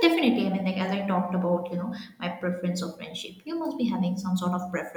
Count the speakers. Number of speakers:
one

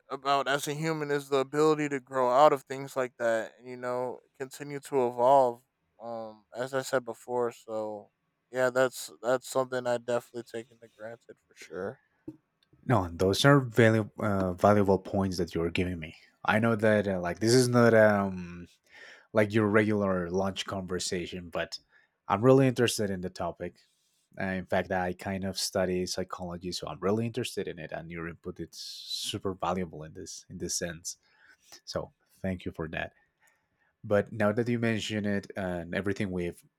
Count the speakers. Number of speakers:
two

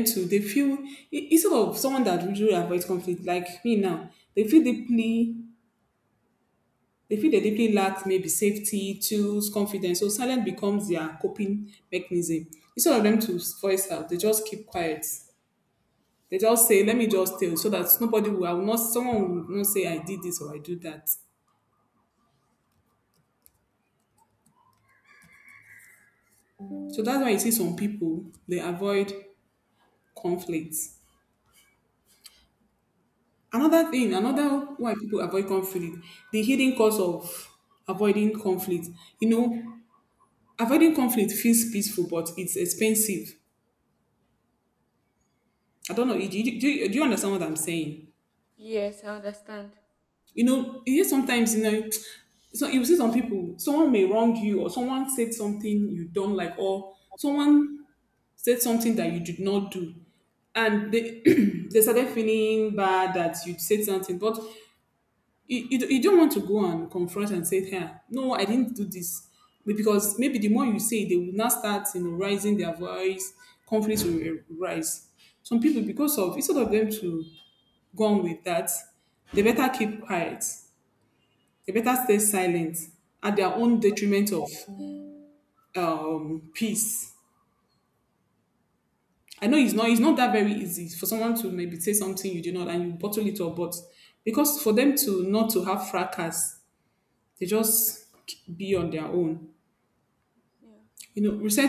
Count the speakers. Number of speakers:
two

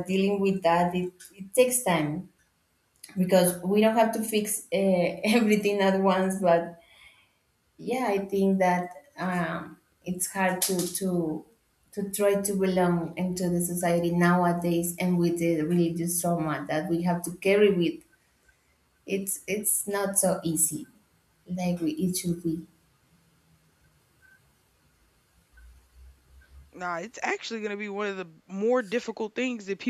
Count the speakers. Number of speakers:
two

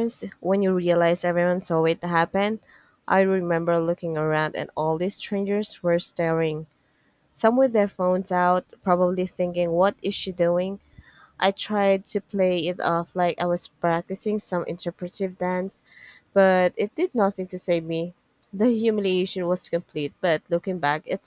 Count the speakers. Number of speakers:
one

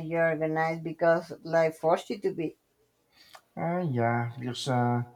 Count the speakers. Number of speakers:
two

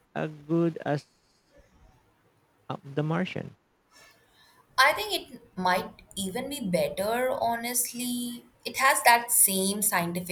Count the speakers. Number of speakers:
two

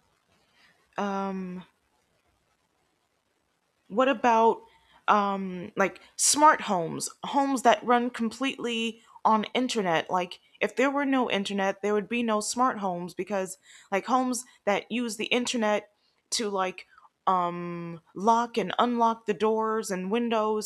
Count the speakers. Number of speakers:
one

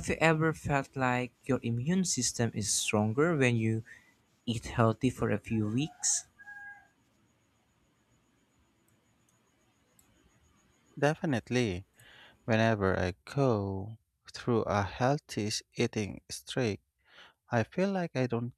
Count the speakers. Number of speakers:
two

